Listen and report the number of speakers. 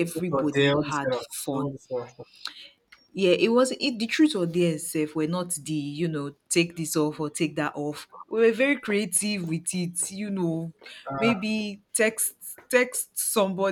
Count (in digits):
2